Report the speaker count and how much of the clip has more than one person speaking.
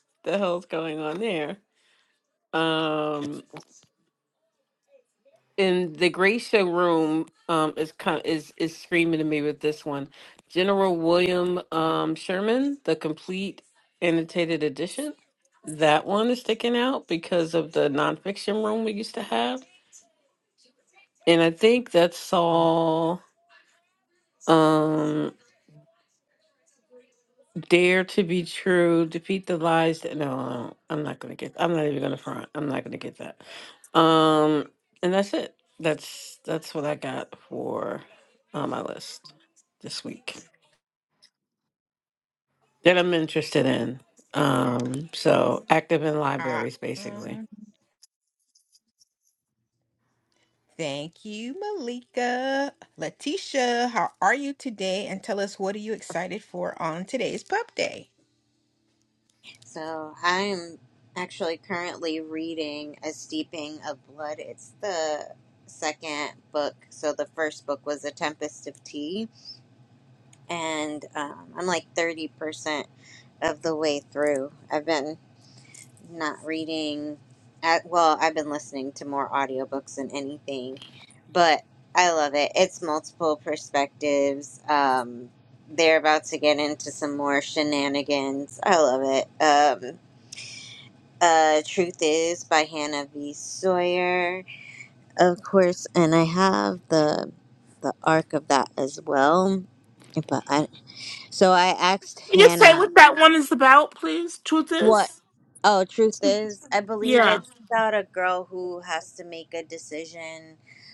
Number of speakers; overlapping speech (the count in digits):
4, about 2%